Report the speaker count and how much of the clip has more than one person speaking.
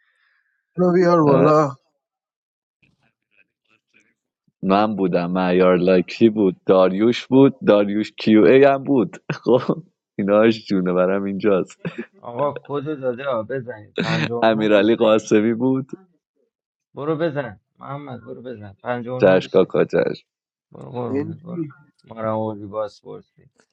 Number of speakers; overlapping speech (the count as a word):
three, about 7%